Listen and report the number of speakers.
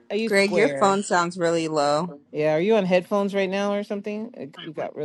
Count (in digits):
2